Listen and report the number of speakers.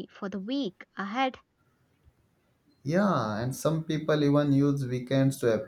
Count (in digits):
2